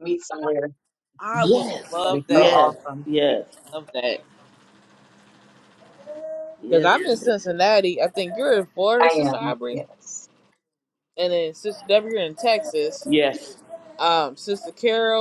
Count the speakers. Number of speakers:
3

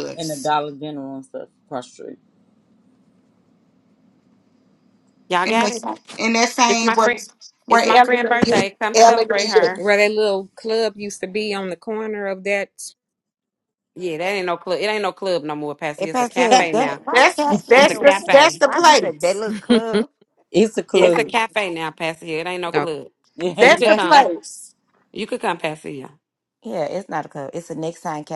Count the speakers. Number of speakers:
5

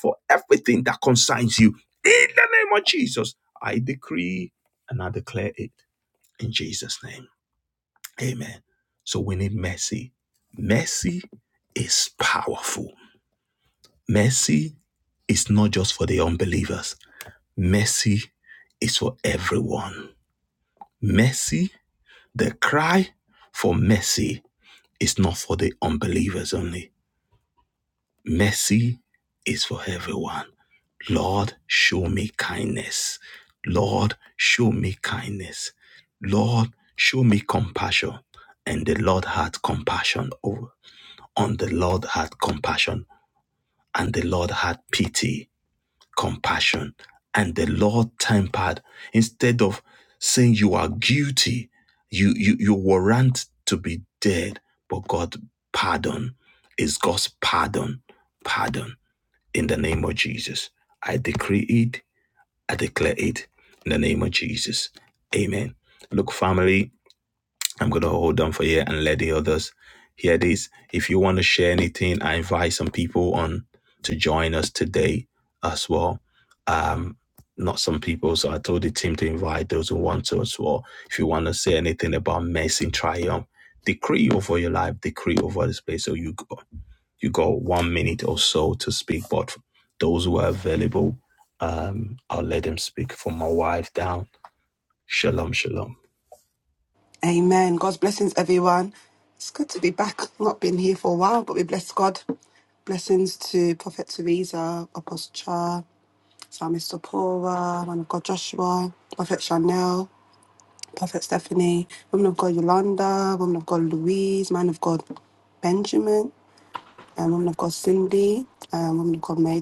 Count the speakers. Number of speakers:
2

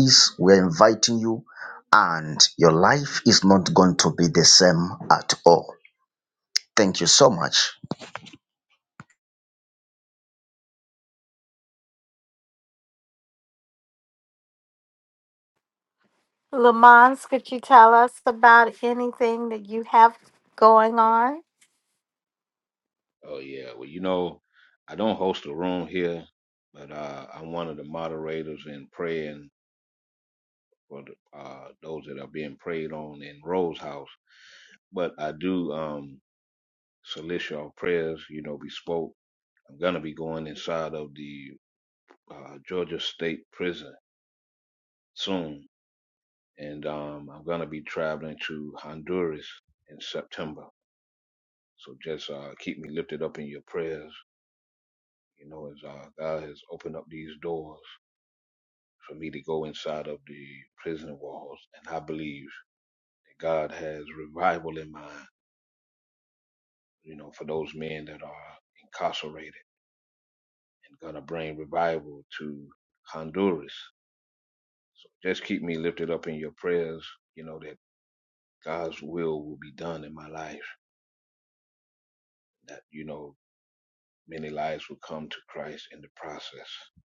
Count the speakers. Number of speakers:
3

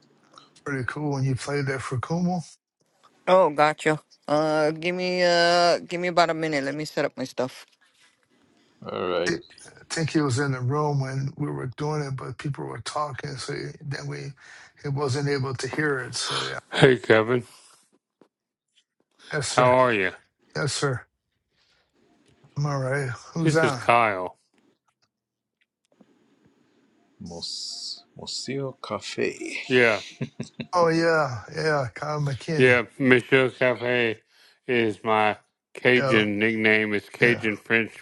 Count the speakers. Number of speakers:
4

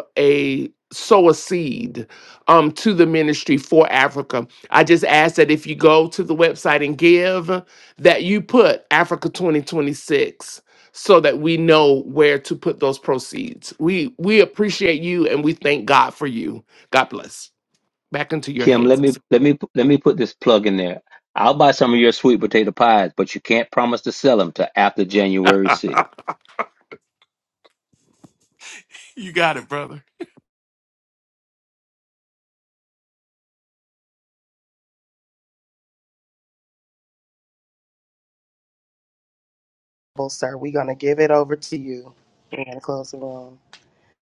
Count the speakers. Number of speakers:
3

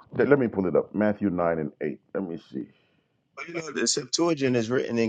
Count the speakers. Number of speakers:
2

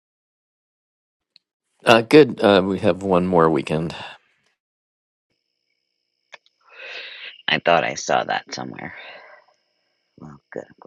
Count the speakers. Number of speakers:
2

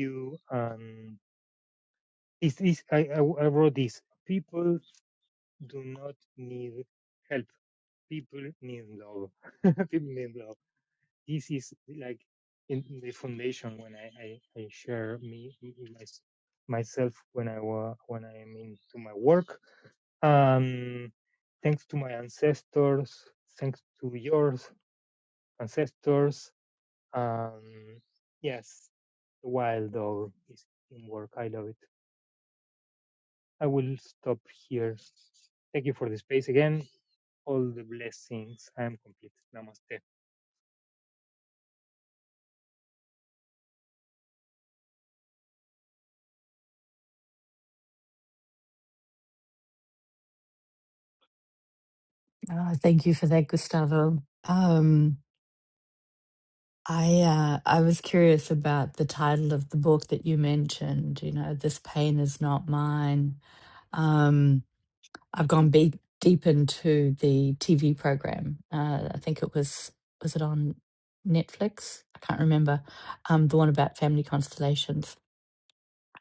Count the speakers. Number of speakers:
2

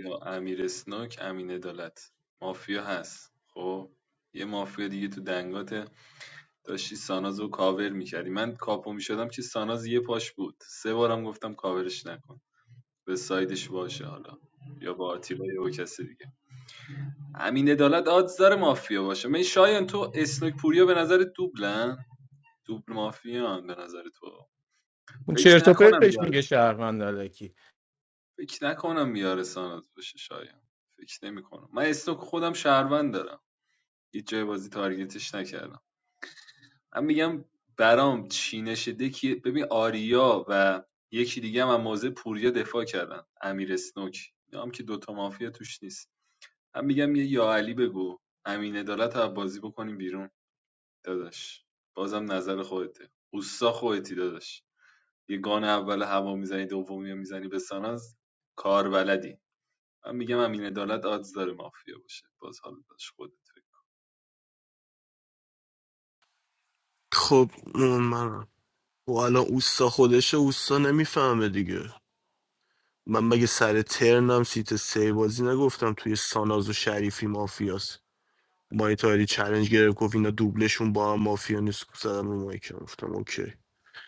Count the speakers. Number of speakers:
3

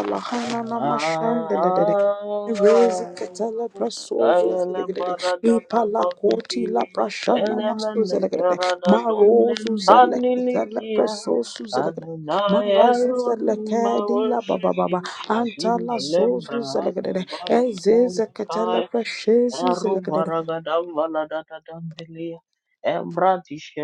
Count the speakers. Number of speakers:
2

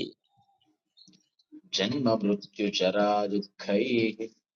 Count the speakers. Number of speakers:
1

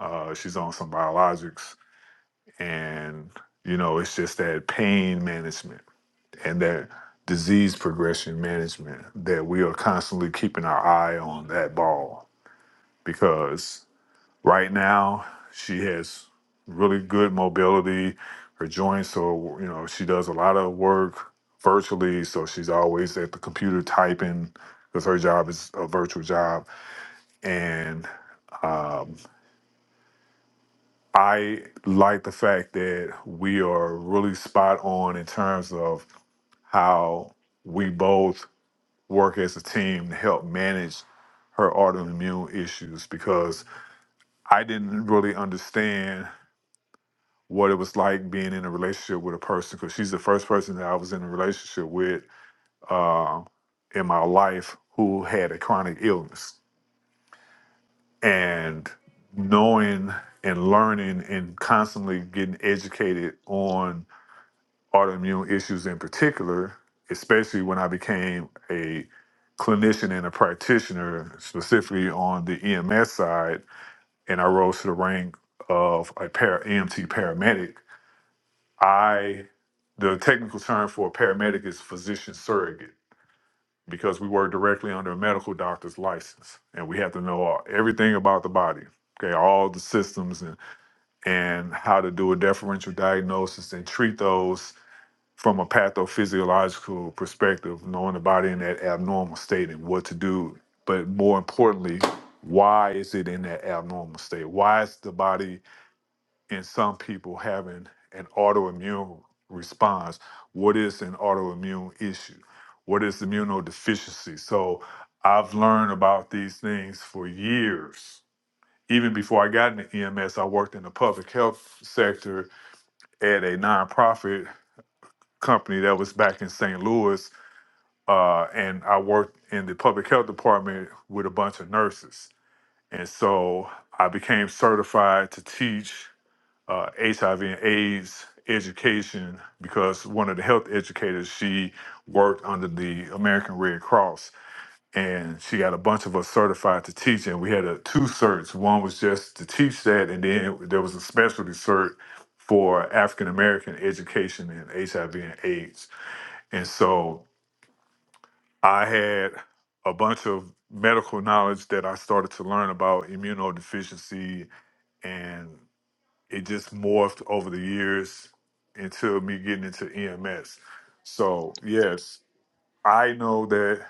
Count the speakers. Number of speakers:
1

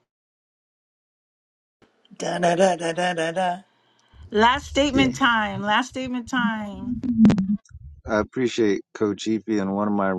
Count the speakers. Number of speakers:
3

